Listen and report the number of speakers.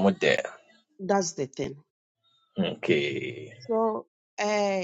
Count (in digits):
2